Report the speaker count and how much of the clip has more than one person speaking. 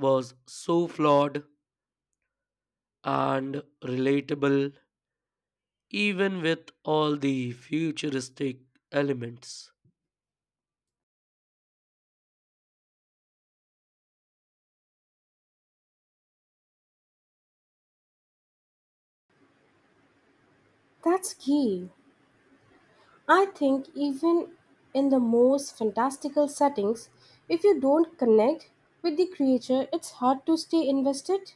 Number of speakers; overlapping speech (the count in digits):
2, no overlap